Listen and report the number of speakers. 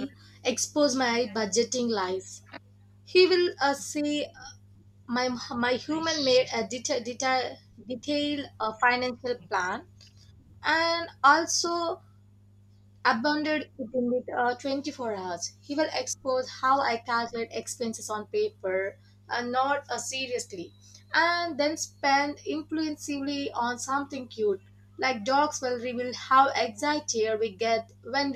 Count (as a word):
one